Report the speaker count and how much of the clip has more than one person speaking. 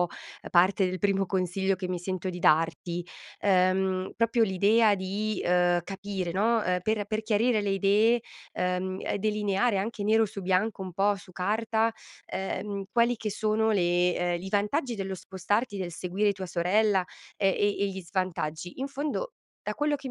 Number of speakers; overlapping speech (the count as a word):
one, no overlap